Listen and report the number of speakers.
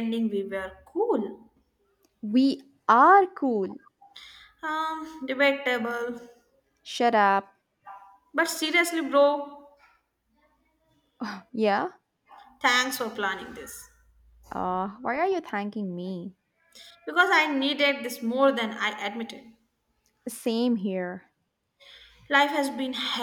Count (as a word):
two